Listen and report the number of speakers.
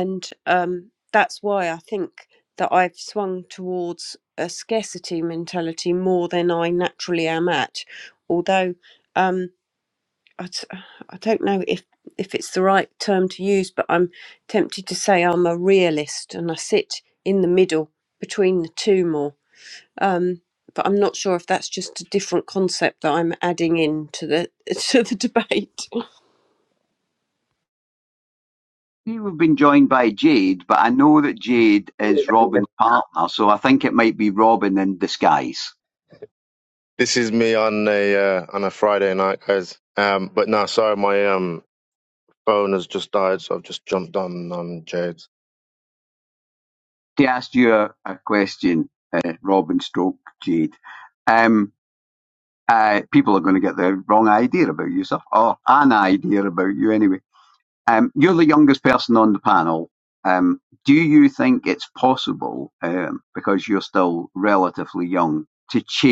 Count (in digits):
3